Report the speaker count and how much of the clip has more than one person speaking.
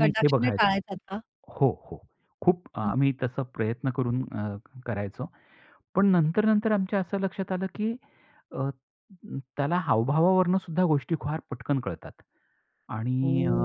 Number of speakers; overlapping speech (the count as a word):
two, about 9%